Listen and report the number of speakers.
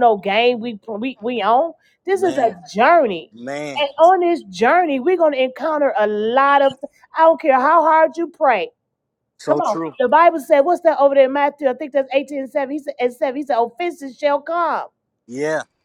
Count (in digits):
2